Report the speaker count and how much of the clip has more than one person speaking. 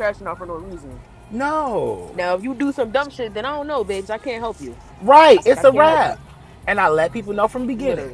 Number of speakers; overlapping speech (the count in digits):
2, about 14%